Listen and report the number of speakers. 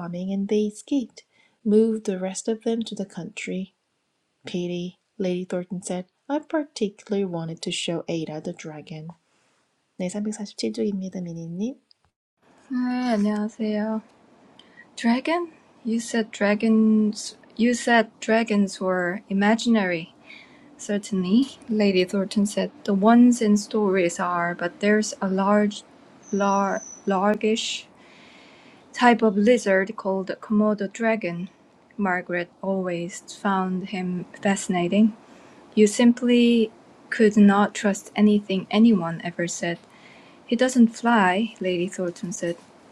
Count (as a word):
two